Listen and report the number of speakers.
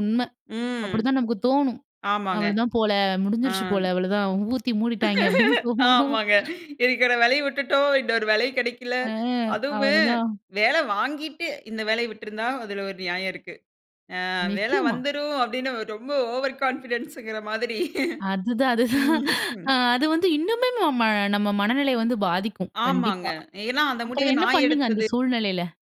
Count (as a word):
two